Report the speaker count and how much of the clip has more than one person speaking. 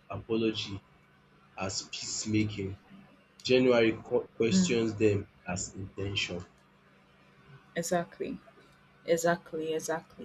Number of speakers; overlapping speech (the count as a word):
two, about 2%